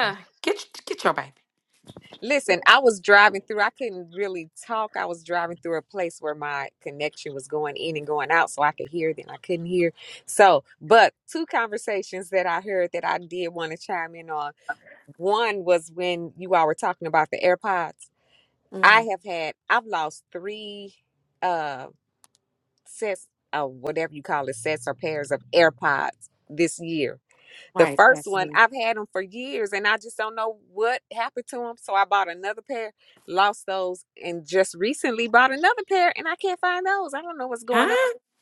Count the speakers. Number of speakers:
2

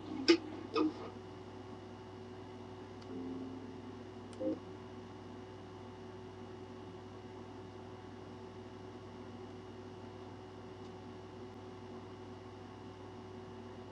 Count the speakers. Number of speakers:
0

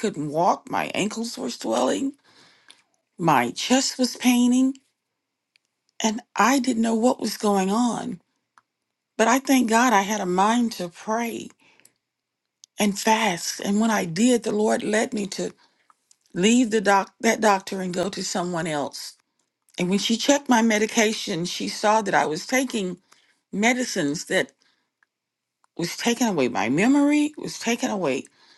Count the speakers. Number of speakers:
1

